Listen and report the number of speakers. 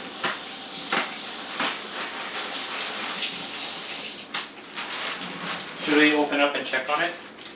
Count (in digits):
1